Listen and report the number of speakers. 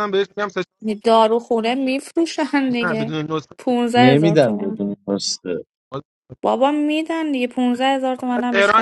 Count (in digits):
3